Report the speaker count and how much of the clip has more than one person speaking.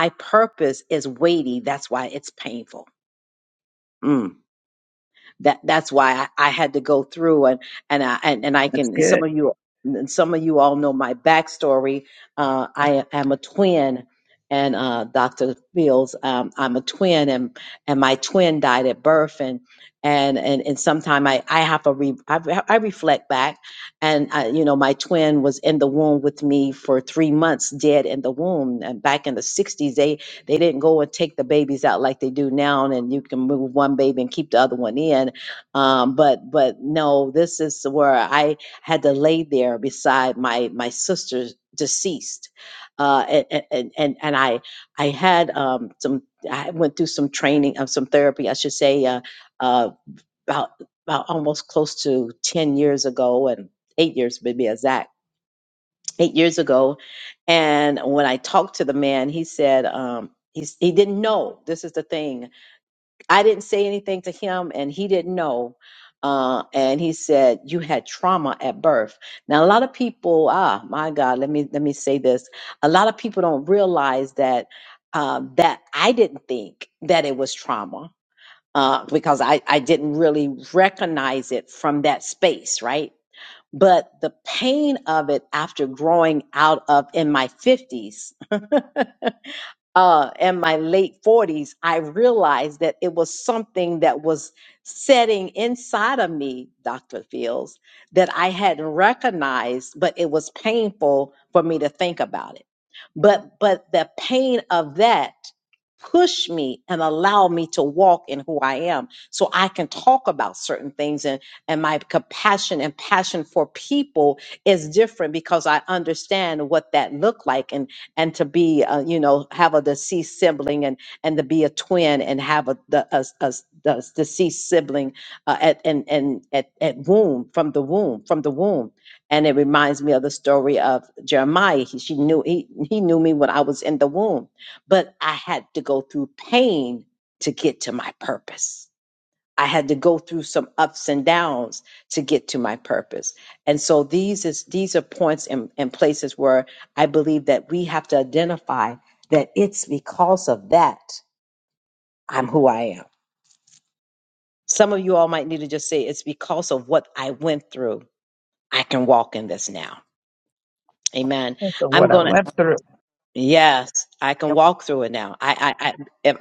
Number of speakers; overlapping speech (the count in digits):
2, about 1%